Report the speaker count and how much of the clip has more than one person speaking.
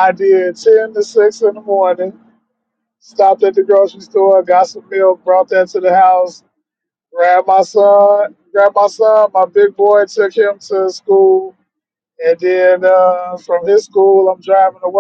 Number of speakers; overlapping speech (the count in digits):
1, no overlap